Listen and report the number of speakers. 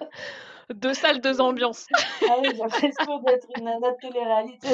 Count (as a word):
two